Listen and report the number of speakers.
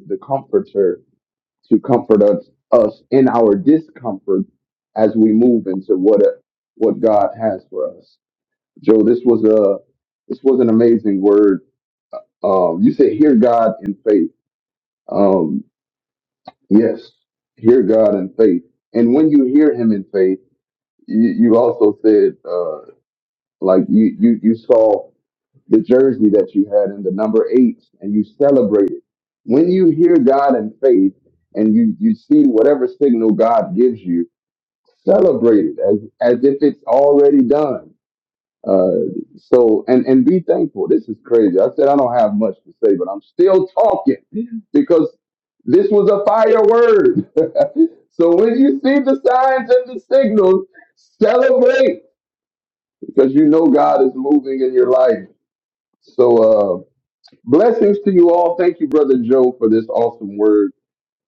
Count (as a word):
one